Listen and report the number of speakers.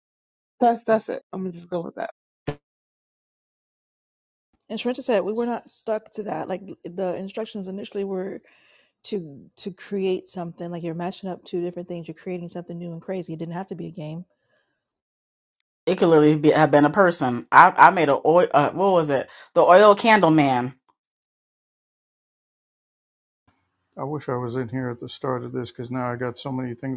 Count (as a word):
four